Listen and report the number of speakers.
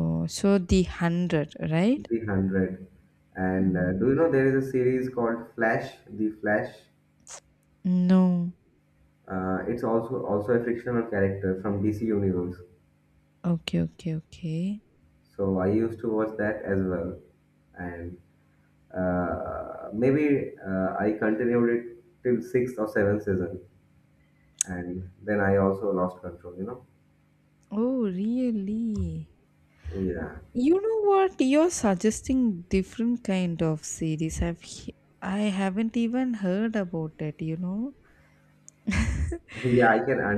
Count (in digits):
2